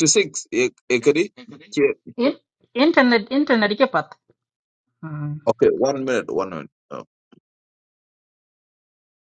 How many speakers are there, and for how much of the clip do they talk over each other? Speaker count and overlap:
2, no overlap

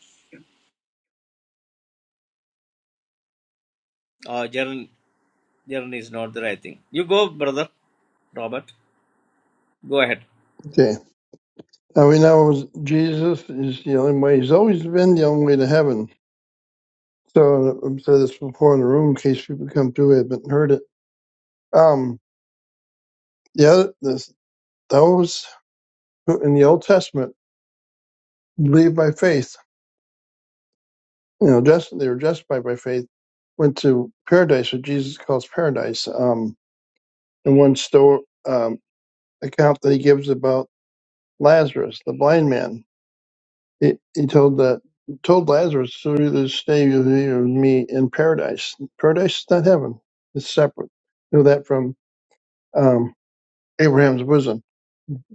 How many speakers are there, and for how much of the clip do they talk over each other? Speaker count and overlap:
2, no overlap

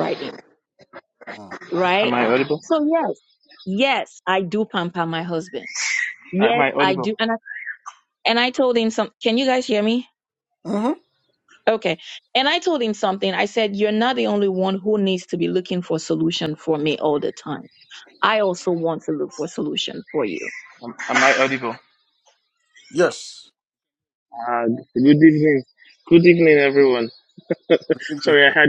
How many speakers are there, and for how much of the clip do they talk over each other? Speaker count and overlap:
3, about 4%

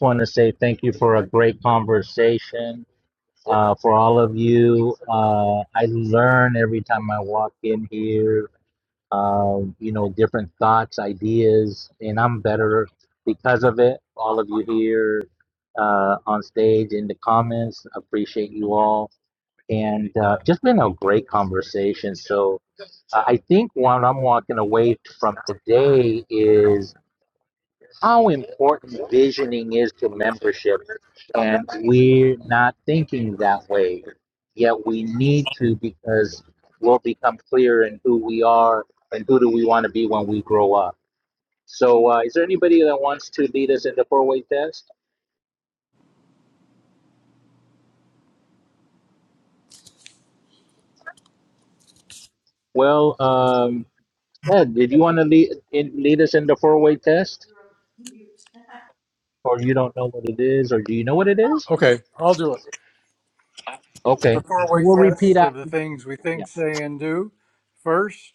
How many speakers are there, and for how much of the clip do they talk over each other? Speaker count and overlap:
2, about 1%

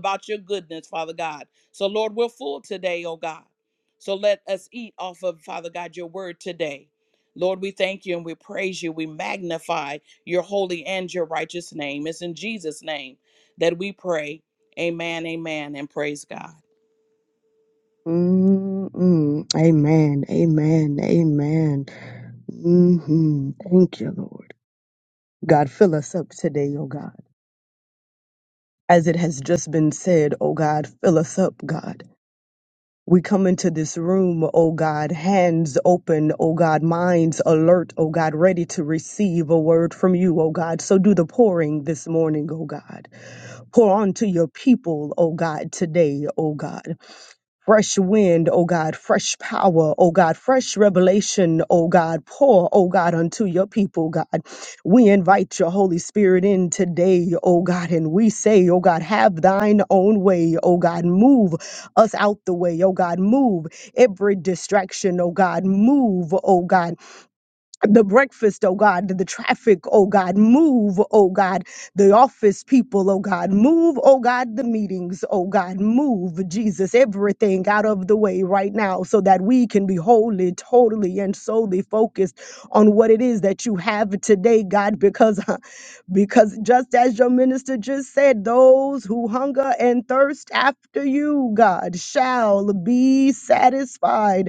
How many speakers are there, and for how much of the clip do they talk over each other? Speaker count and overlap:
2, no overlap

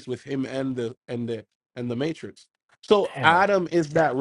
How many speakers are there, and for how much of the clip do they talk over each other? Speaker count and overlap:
1, no overlap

